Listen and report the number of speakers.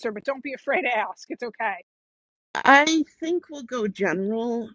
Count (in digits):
2